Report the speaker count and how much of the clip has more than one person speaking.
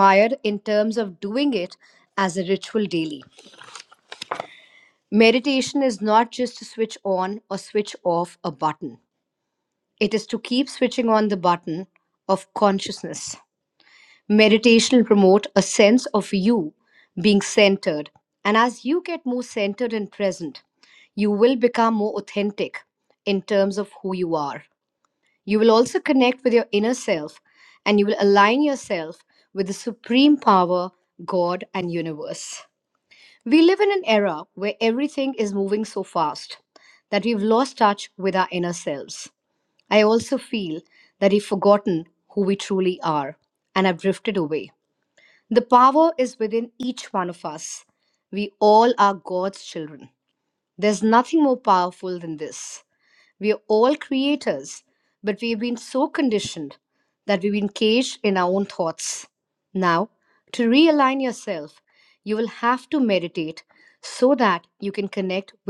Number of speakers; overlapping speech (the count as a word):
one, no overlap